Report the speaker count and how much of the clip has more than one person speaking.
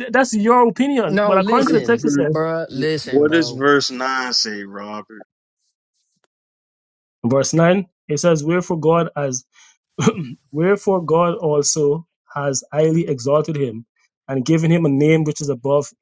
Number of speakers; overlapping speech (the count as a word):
three, about 11%